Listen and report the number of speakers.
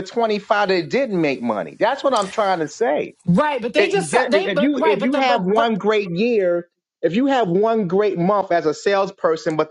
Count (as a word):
two